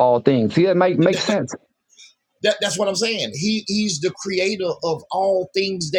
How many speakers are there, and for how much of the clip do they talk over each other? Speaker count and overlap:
2, about 4%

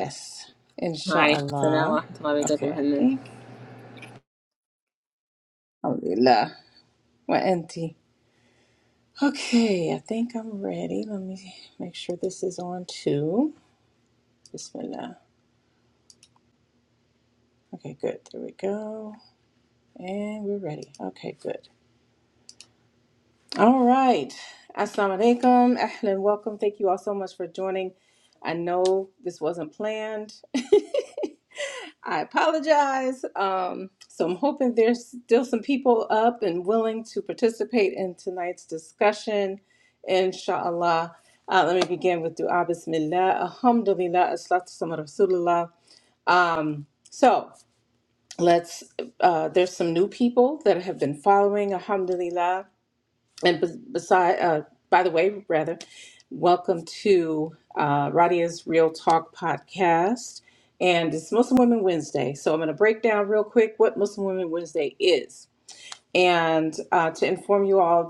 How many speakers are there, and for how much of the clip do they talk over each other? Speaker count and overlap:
2, about 2%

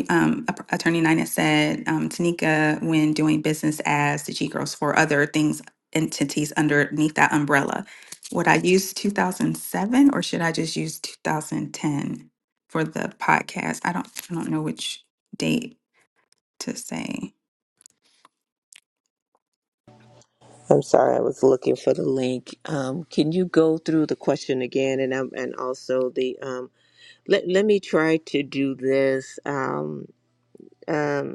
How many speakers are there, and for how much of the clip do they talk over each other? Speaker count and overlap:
2, no overlap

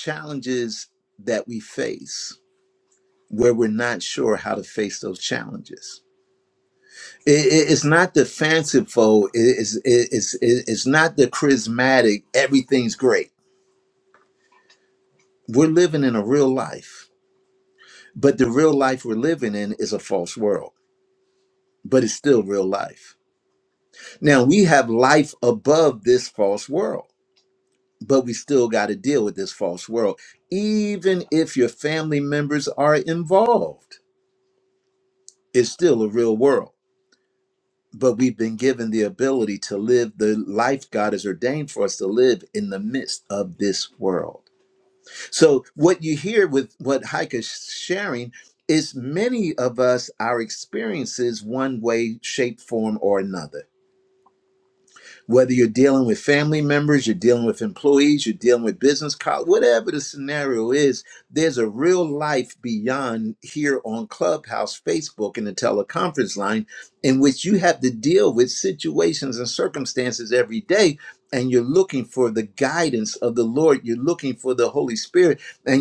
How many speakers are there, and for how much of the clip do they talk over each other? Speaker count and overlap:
1, no overlap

